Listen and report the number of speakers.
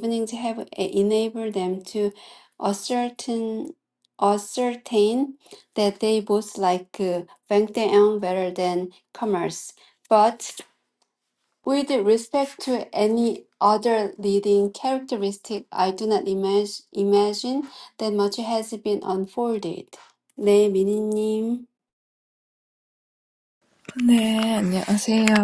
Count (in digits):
2